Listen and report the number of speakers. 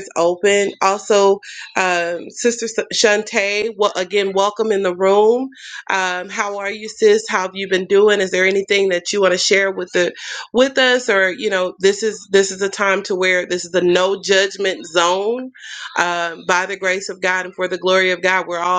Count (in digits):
1